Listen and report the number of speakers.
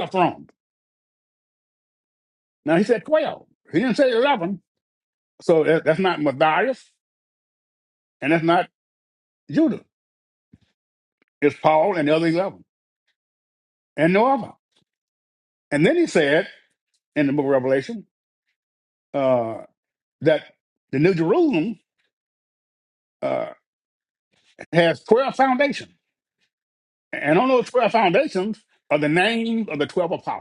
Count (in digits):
1